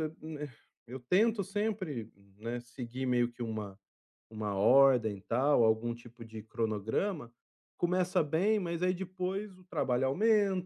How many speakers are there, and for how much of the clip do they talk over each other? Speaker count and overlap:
1, no overlap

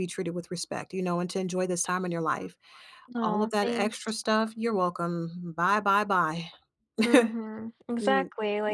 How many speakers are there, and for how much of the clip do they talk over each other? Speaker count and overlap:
2, about 13%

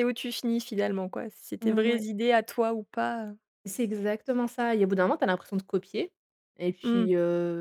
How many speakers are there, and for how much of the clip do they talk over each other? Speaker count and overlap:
2, about 9%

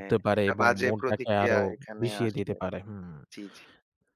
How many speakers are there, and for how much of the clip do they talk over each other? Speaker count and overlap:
2, about 63%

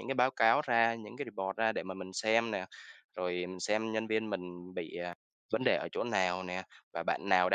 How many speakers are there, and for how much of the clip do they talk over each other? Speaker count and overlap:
1, no overlap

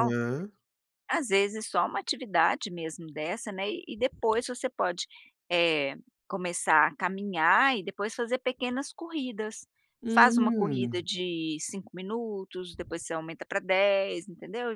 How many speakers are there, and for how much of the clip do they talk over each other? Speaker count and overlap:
2, about 6%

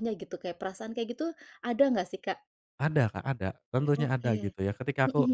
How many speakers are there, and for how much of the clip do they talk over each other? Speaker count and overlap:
2, about 15%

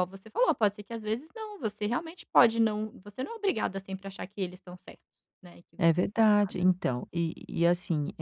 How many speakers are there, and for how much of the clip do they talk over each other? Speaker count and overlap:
2, about 2%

